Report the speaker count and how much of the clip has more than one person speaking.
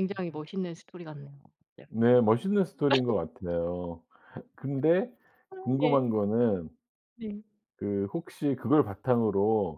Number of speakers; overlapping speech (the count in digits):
2, about 4%